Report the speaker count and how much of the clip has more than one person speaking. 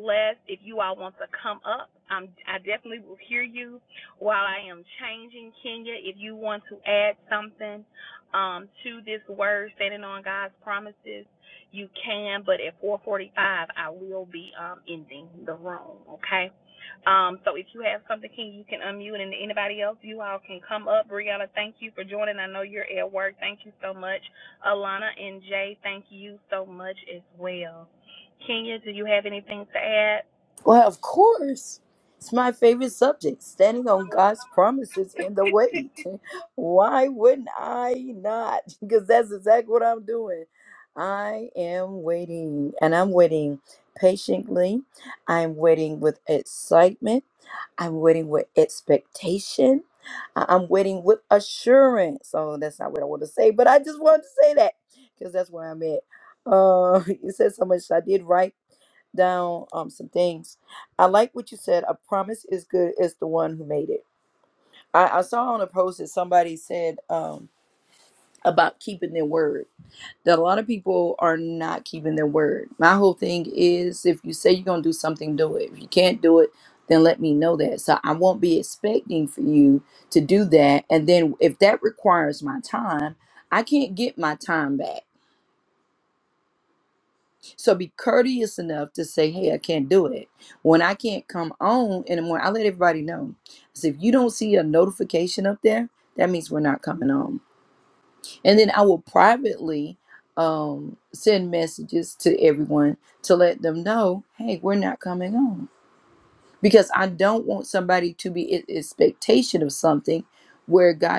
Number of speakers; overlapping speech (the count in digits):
2, no overlap